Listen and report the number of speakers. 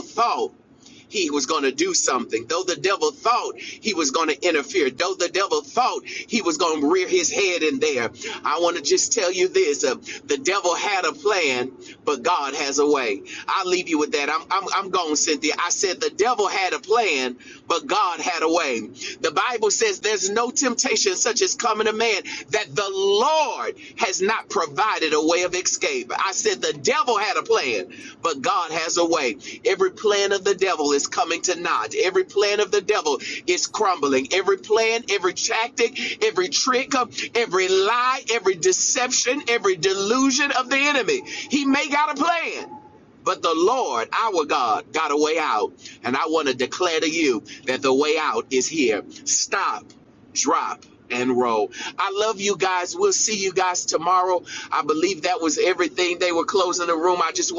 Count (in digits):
1